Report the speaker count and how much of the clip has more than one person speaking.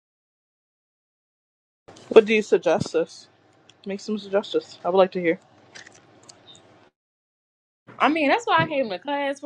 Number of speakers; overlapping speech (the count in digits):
2, no overlap